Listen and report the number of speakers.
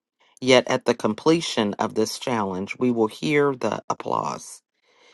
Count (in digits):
1